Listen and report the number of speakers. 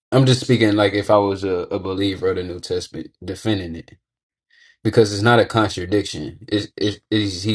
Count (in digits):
1